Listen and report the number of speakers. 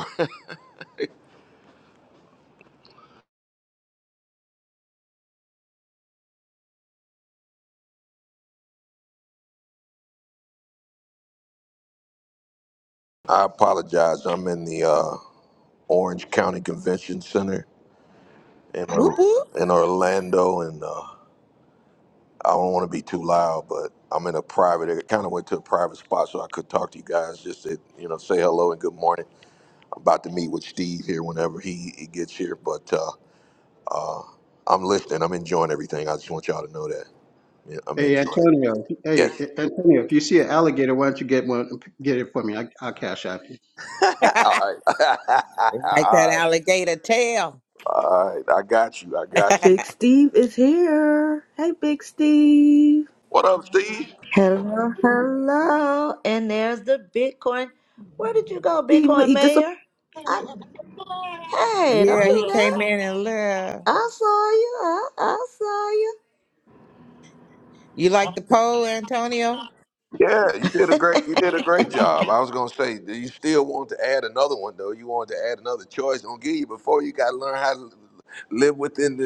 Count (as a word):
five